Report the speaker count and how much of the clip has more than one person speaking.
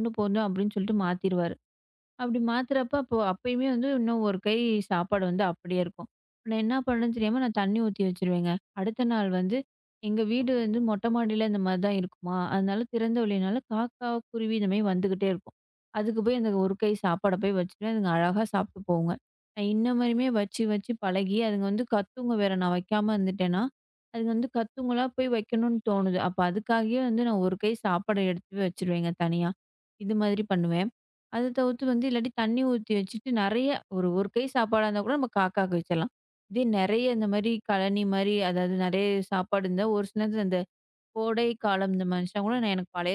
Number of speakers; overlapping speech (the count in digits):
1, no overlap